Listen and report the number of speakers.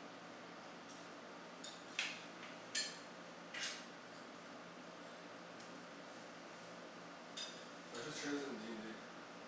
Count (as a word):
one